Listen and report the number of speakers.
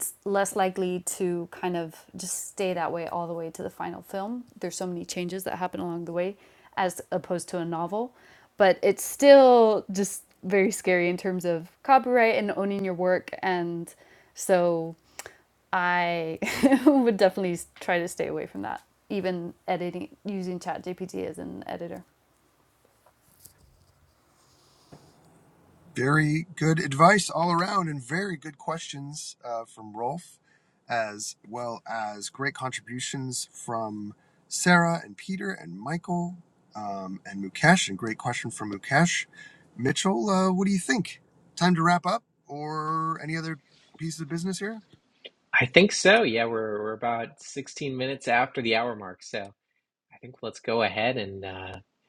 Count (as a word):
three